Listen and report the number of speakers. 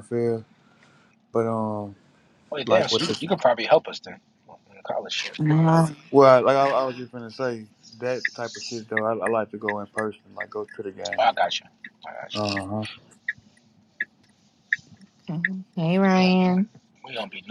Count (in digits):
3